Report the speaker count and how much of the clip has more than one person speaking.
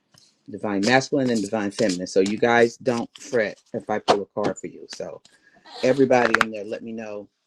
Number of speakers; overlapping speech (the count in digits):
1, no overlap